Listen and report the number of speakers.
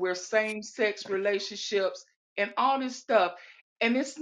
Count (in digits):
1